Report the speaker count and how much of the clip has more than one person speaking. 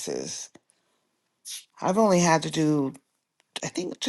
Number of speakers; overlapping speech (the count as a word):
one, no overlap